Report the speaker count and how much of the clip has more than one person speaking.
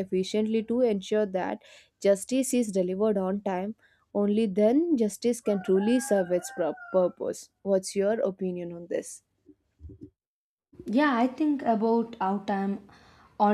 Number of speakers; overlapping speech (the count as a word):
two, no overlap